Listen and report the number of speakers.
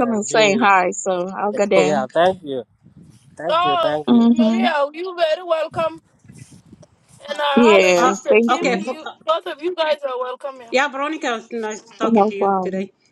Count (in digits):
4